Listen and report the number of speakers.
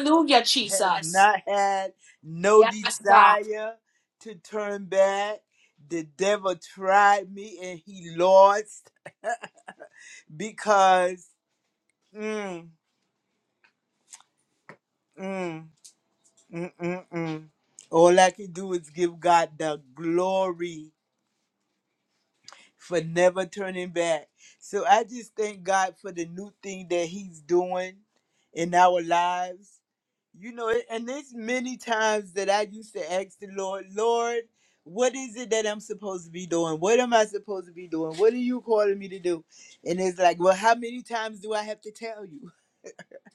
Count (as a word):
two